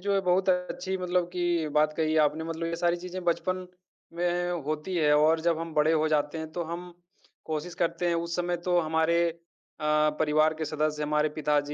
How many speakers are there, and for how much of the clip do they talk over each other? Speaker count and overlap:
one, no overlap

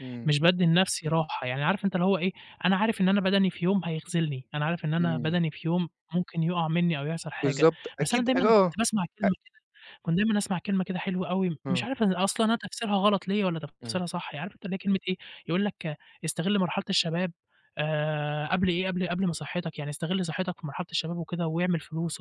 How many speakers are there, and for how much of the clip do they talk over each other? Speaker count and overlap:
two, about 8%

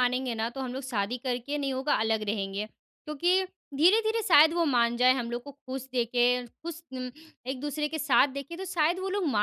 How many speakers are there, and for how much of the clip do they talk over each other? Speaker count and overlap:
one, no overlap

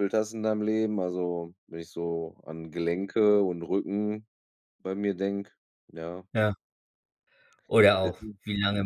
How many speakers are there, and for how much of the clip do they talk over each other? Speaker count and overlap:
two, no overlap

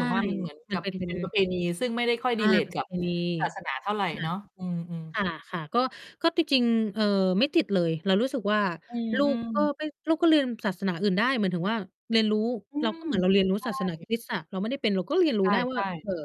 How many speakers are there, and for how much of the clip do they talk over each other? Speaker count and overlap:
two, about 16%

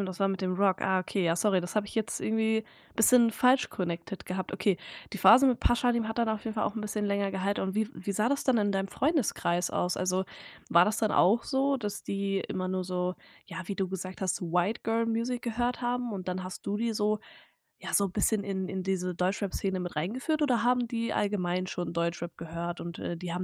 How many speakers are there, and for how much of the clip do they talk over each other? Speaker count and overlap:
one, no overlap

